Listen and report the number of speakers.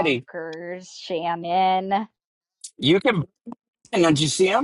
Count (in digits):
2